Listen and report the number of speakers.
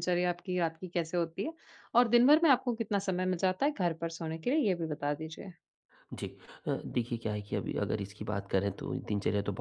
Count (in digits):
2